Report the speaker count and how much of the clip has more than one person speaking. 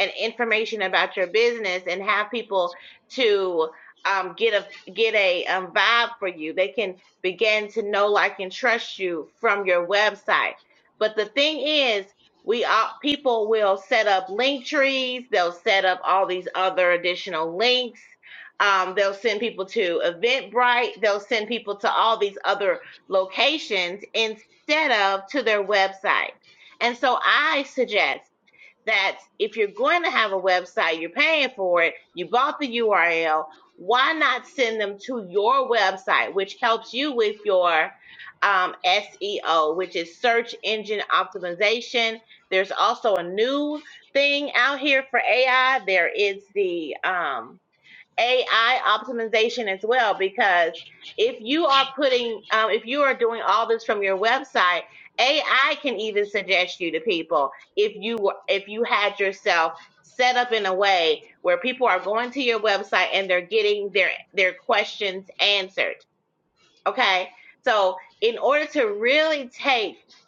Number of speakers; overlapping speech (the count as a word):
one, no overlap